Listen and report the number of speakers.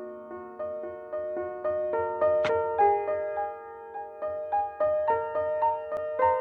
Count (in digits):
0